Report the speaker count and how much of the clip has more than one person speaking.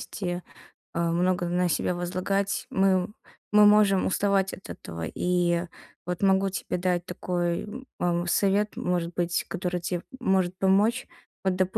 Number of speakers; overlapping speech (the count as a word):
one, no overlap